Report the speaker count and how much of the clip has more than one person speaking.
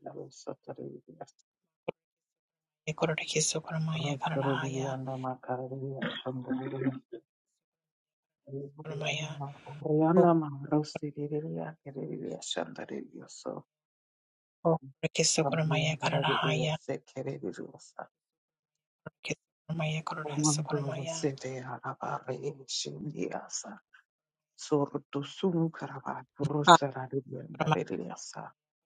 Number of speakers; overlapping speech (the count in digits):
2, about 12%